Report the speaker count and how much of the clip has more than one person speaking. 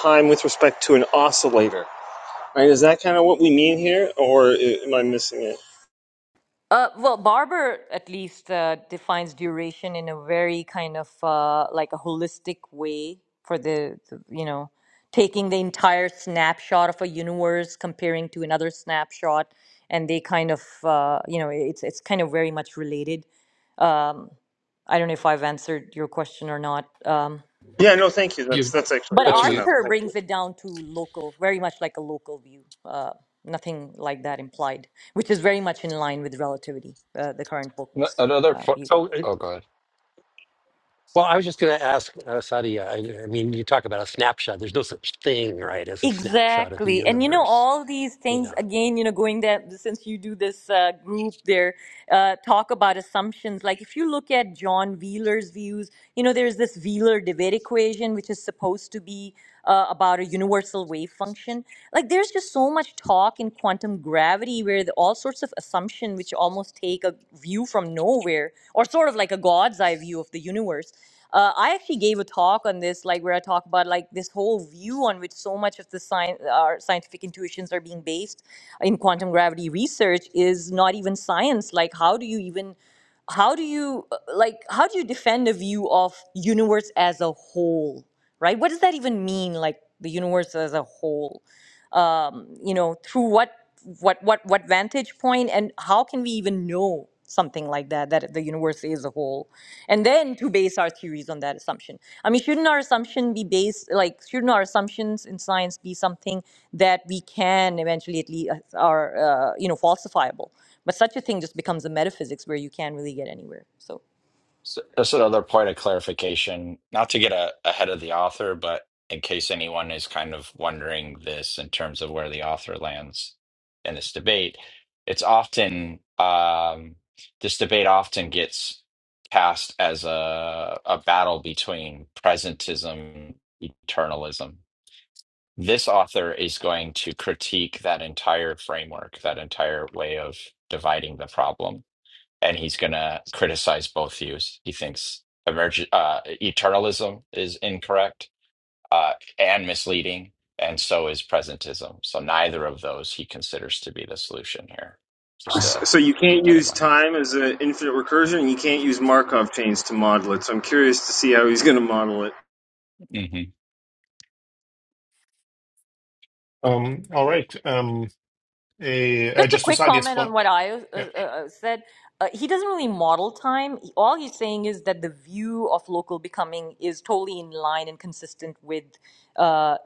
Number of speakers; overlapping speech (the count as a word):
five, about 3%